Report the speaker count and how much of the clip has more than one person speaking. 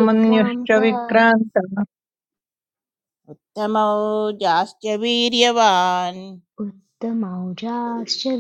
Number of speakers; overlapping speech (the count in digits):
3, about 10%